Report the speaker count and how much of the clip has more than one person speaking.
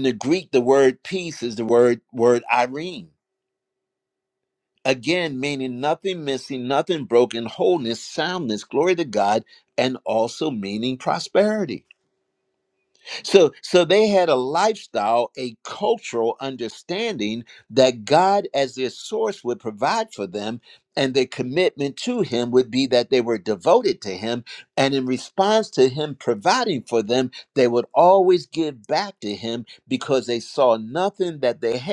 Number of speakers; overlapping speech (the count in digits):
1, no overlap